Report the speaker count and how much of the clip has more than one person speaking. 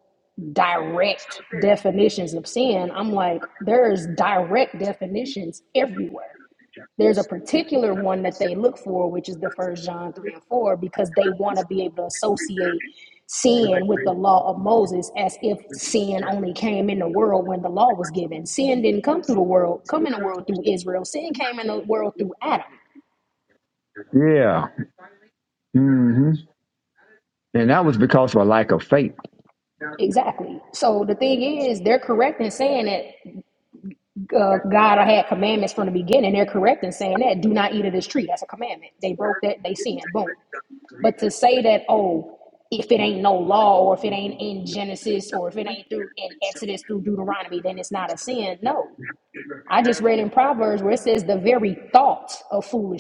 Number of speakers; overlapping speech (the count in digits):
2, no overlap